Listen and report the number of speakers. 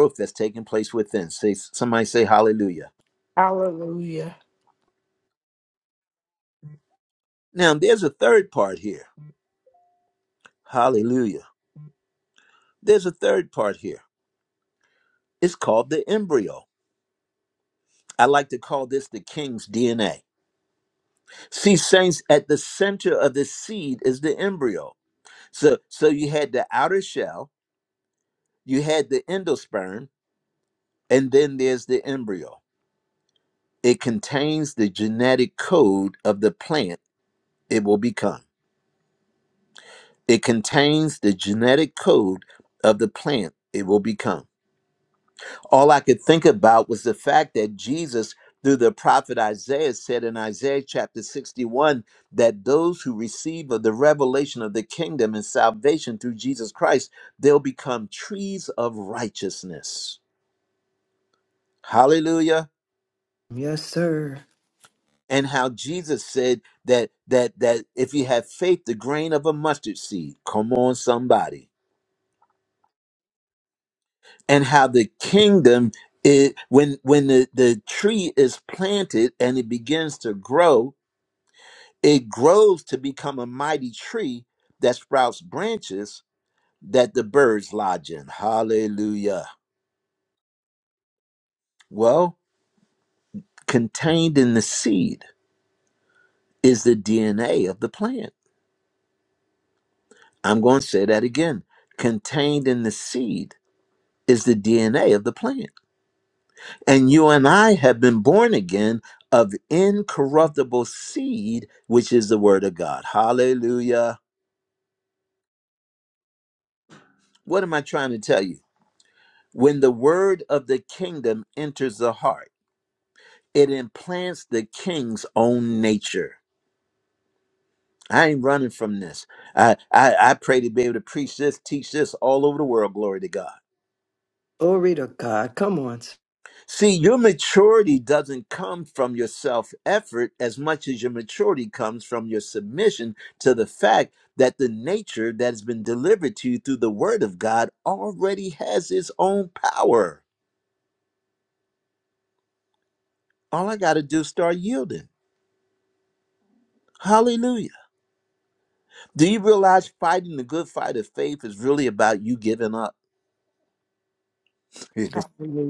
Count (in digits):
3